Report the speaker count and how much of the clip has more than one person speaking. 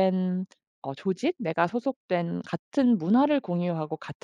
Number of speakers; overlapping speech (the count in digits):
1, no overlap